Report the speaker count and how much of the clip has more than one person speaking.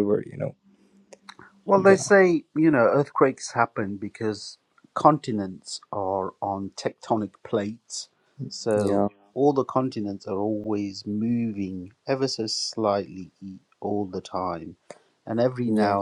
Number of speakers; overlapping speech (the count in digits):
2, about 6%